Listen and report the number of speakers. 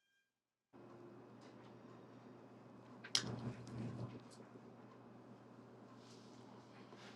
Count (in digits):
0